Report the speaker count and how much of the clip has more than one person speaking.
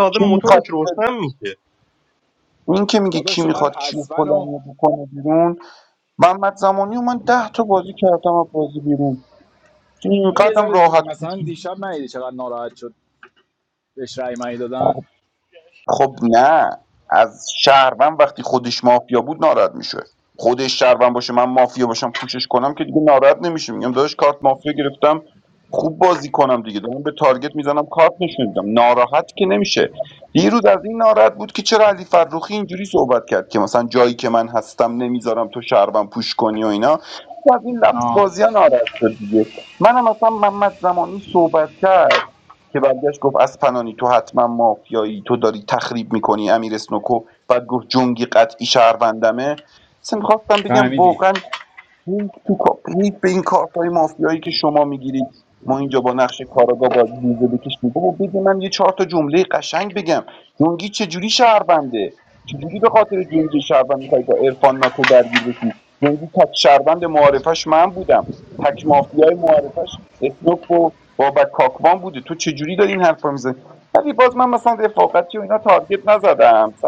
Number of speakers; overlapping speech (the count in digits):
3, about 5%